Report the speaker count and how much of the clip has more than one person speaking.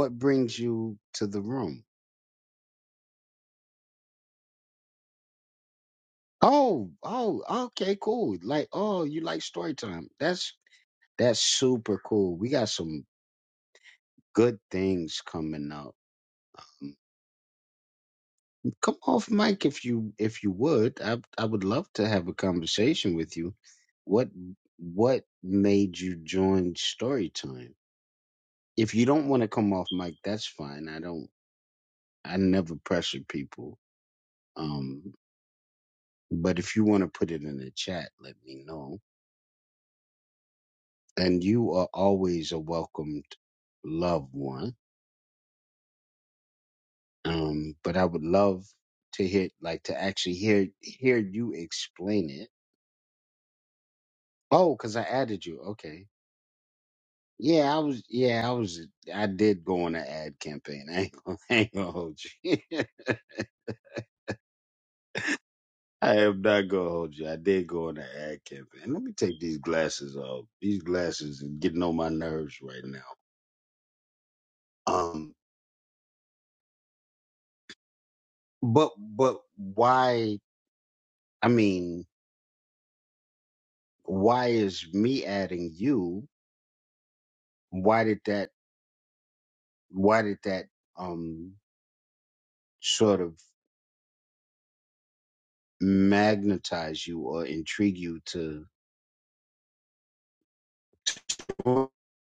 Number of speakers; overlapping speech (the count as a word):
one, no overlap